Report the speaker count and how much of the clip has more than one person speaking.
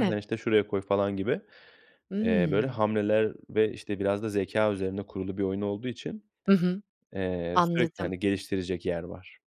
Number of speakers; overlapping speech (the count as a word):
two, about 13%